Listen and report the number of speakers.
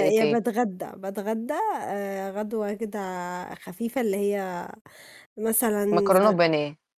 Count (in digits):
2